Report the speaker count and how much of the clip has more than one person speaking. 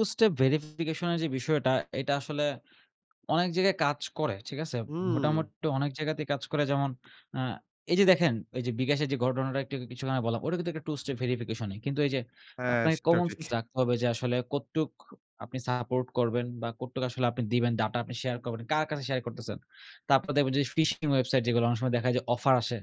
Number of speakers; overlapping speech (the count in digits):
2, about 6%